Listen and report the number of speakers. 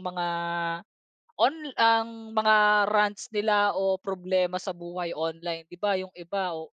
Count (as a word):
one